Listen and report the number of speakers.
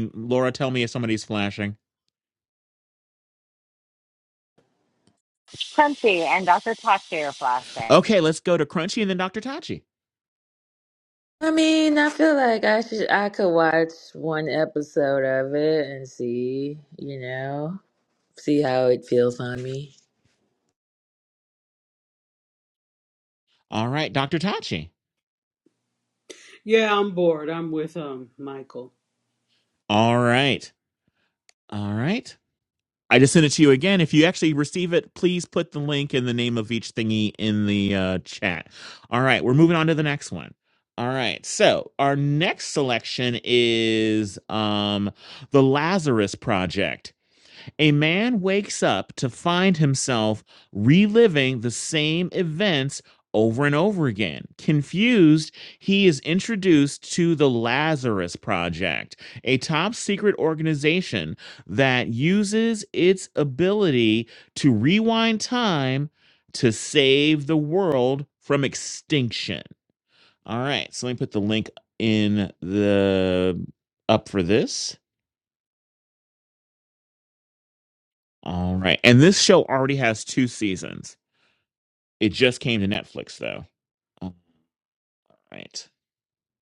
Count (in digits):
4